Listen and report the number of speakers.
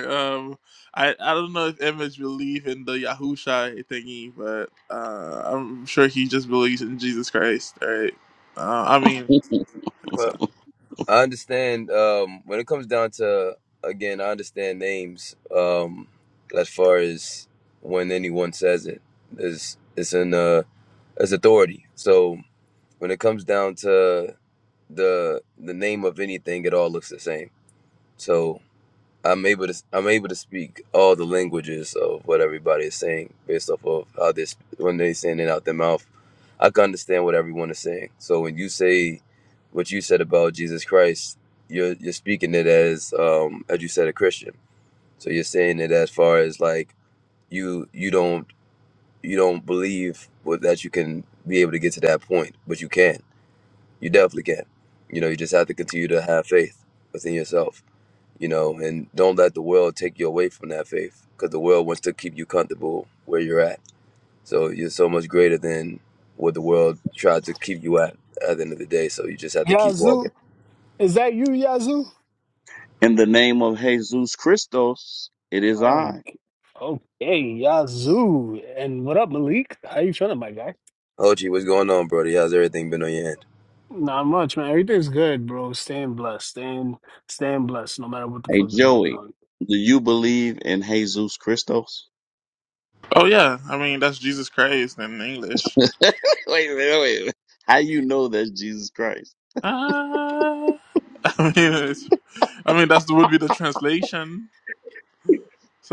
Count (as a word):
four